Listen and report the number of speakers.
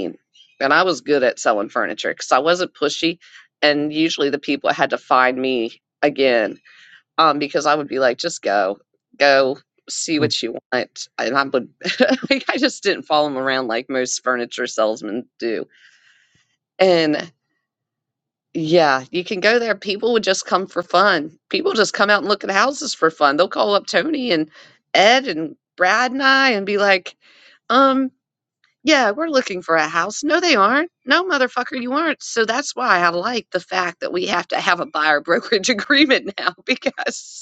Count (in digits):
1